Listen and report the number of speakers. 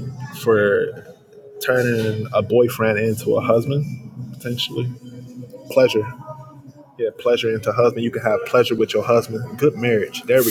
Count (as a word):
one